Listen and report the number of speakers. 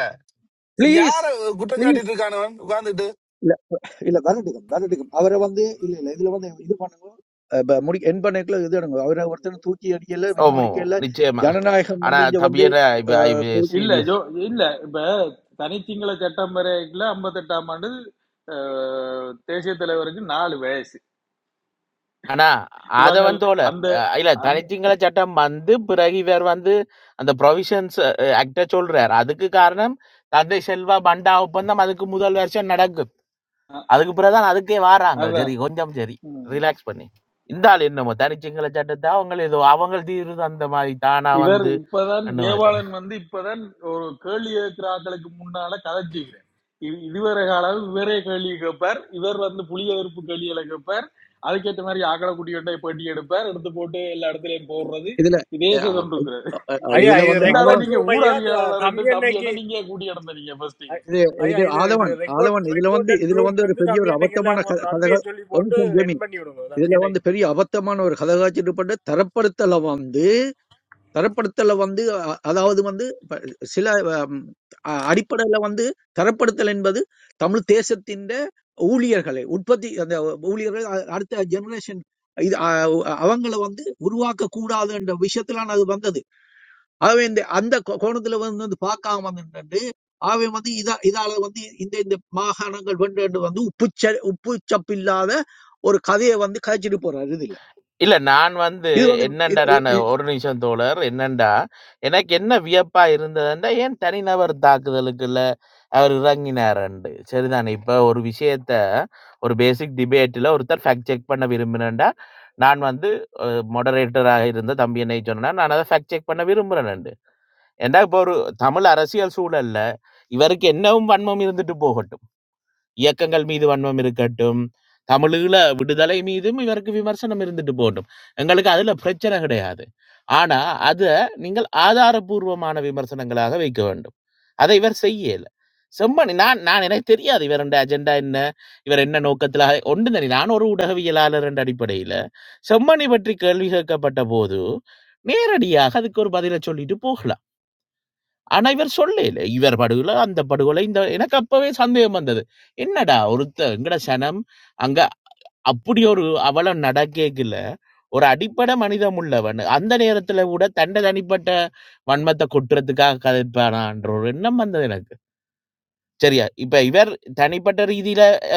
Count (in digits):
5